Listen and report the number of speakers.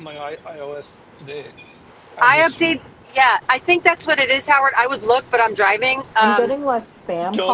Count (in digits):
3